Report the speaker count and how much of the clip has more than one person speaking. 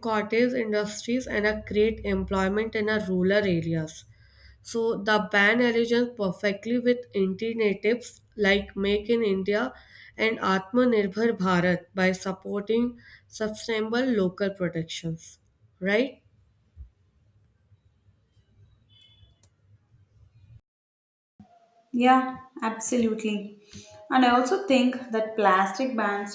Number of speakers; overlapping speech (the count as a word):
two, no overlap